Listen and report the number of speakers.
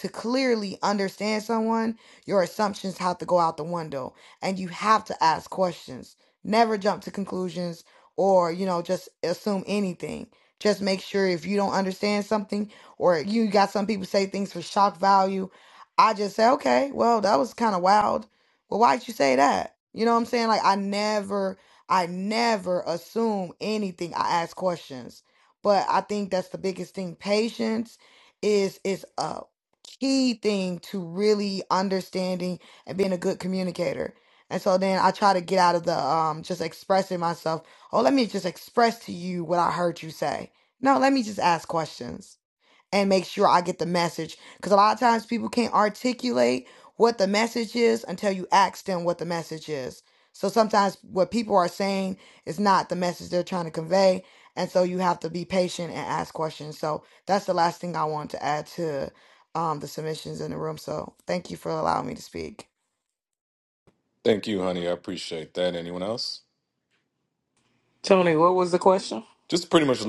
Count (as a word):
three